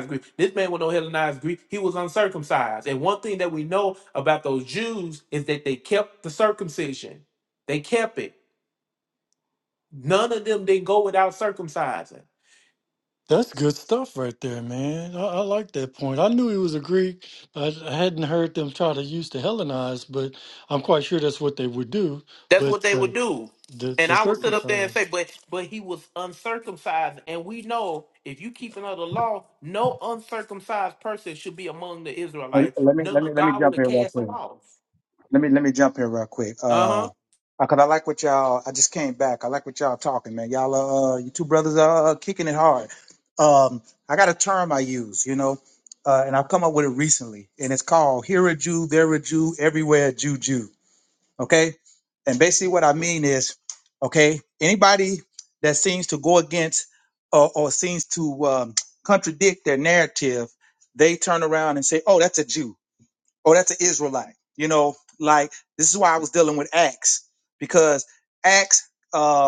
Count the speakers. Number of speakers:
three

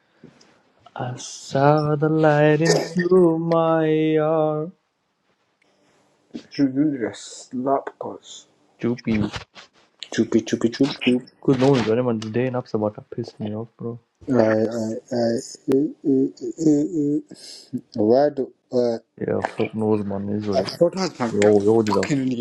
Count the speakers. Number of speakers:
two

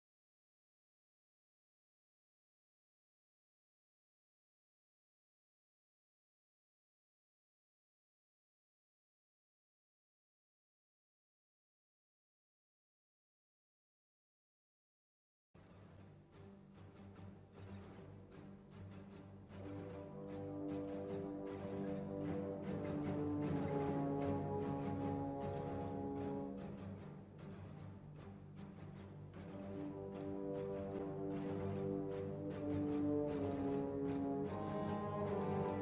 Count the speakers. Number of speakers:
zero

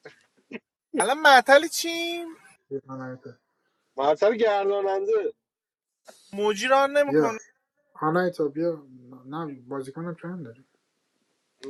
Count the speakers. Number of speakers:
three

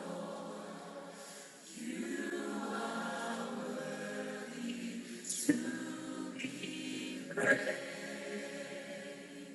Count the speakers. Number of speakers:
zero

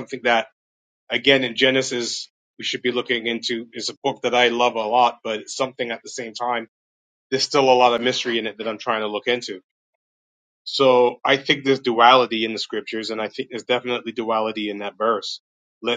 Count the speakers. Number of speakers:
one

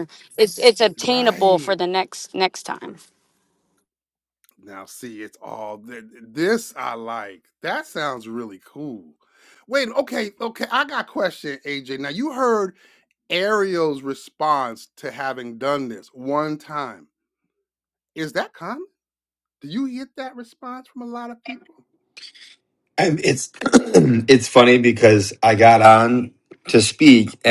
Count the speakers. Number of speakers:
three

